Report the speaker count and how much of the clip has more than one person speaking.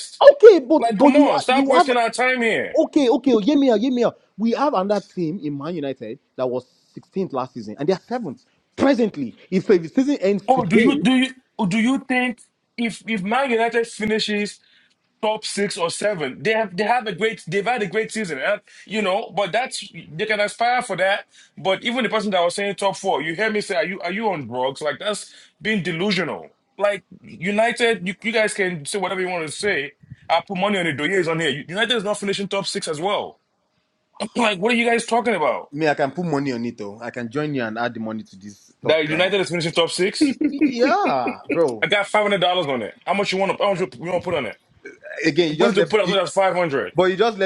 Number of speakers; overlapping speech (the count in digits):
2, about 6%